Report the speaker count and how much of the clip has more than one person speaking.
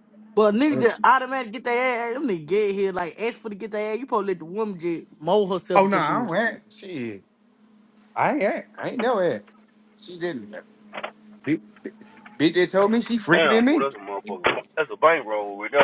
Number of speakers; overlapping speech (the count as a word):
three, about 9%